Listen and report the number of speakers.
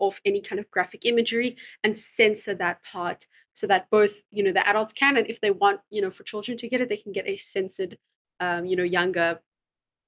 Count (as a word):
one